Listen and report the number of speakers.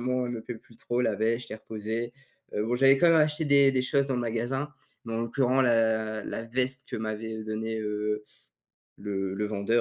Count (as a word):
one